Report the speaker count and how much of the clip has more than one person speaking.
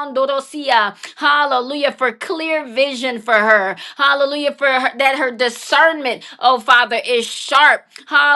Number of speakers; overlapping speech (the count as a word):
one, no overlap